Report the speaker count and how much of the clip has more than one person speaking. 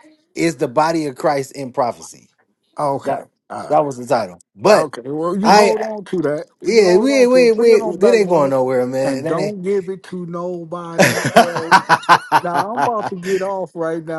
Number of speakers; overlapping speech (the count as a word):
two, about 32%